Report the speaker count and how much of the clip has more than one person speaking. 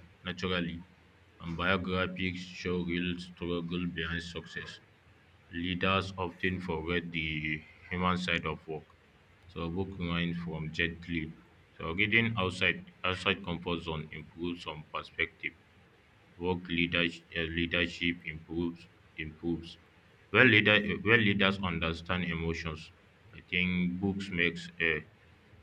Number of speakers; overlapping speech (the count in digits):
1, no overlap